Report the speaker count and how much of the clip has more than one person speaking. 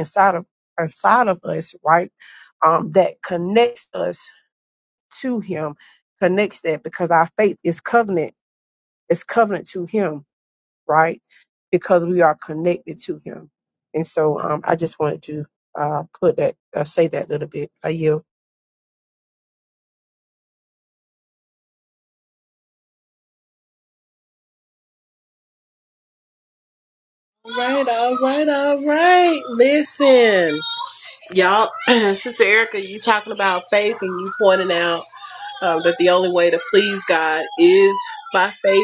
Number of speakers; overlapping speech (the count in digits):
2, no overlap